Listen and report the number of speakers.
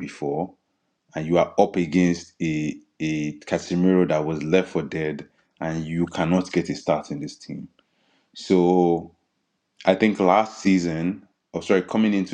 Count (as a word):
one